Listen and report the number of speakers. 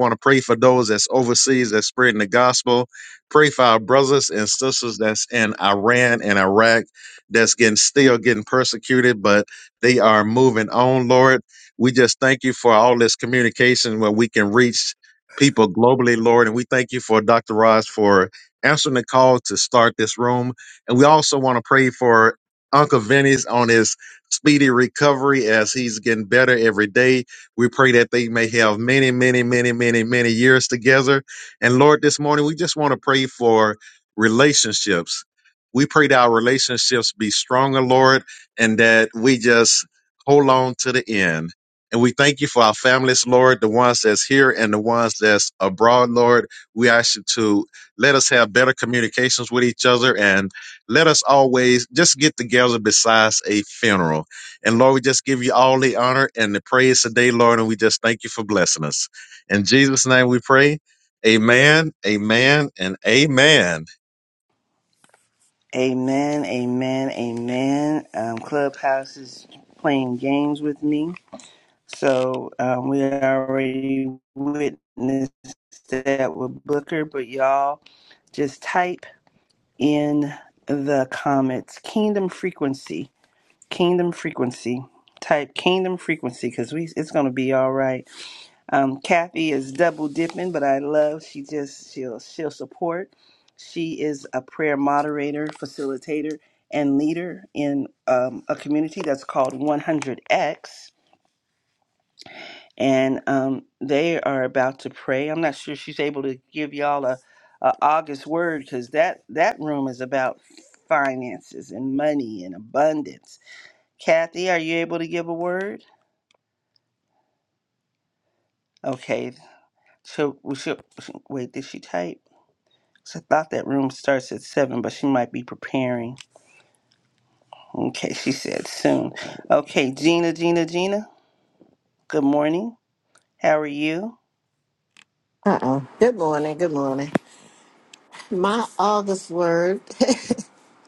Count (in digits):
3